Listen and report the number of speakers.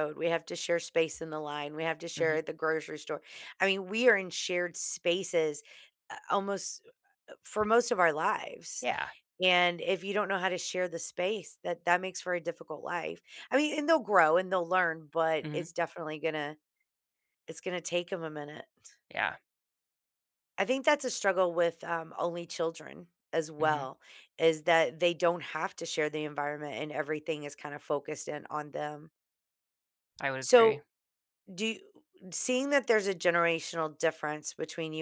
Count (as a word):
two